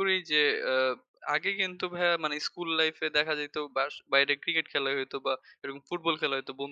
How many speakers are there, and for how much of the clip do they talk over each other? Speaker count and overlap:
1, no overlap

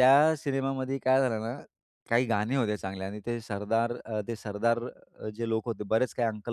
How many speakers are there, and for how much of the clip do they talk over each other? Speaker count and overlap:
1, no overlap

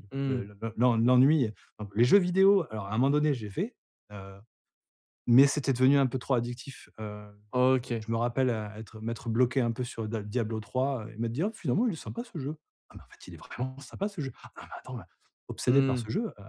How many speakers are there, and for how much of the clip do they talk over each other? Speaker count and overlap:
2, about 4%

